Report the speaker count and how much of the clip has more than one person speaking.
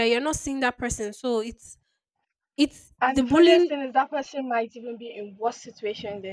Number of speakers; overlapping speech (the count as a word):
two, about 11%